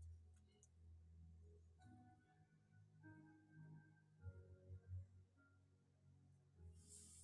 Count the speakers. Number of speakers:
0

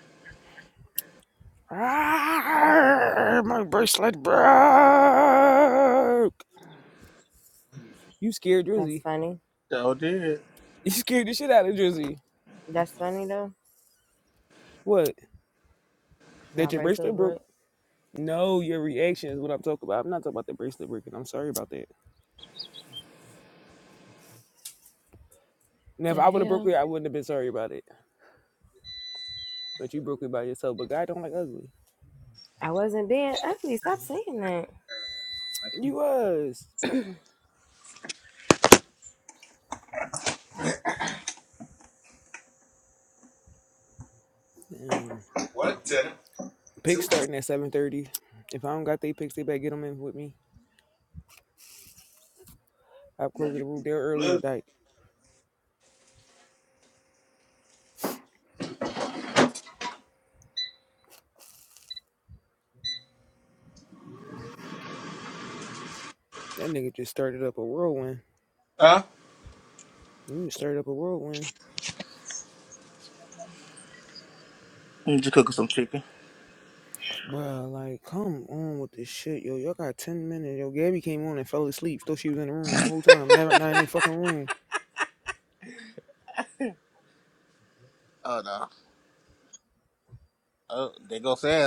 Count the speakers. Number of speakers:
3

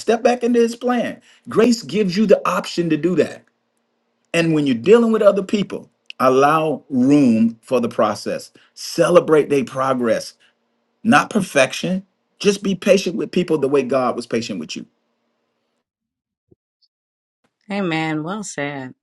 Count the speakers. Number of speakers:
2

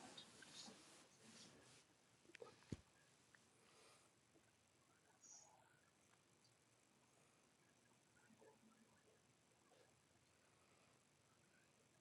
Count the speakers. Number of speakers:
0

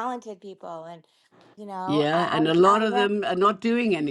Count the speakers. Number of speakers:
2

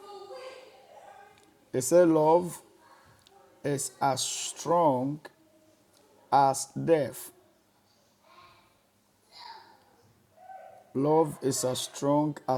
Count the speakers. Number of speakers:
1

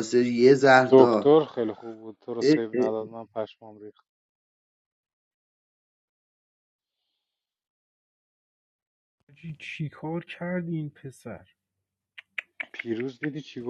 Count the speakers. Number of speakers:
3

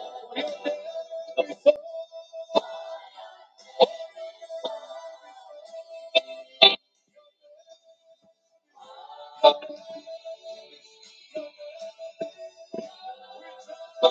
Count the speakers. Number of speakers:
0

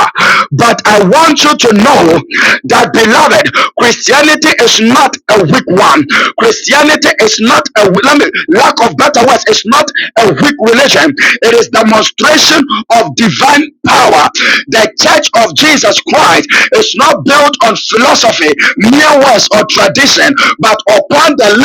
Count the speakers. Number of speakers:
1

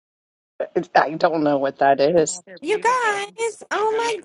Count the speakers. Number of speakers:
2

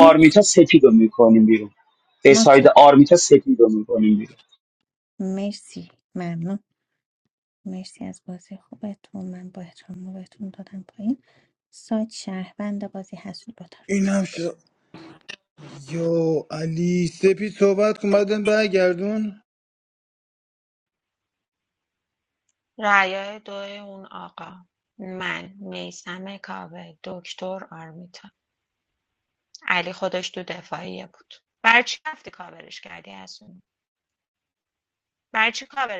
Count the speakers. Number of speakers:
4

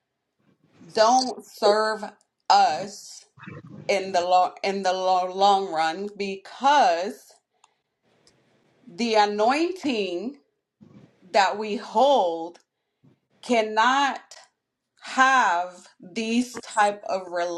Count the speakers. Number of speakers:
1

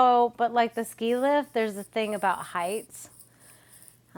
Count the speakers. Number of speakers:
1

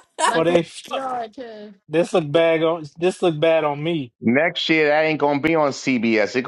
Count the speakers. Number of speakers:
3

